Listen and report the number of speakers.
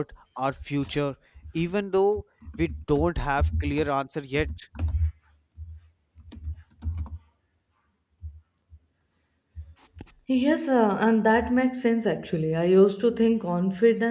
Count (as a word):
two